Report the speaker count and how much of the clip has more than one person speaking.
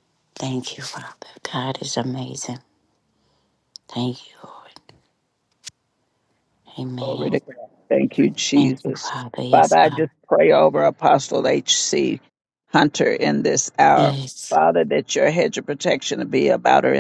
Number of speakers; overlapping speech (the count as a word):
two, about 9%